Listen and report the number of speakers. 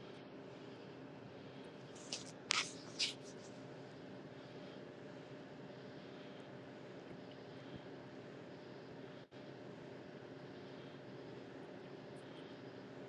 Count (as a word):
zero